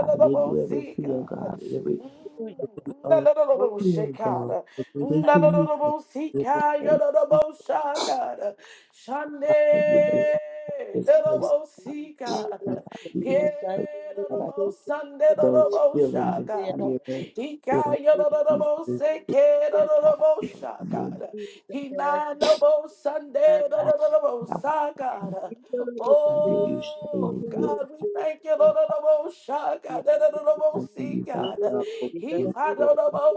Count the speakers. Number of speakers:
3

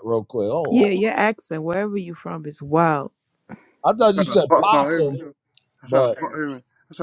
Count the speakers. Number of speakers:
3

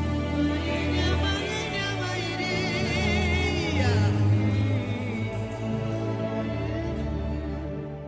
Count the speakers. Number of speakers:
0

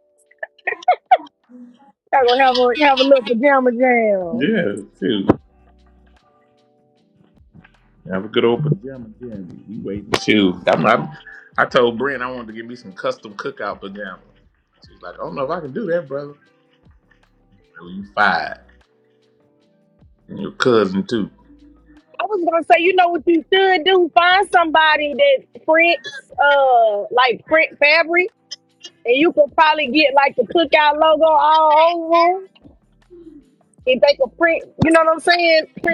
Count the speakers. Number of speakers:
2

